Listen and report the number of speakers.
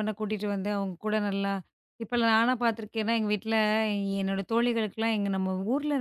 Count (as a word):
one